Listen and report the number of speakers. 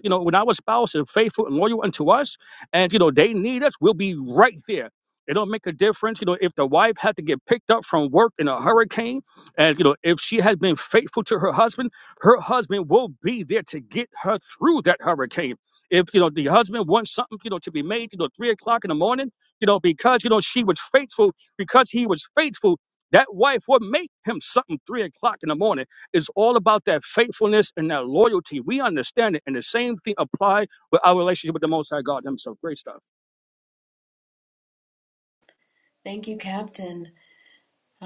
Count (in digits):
2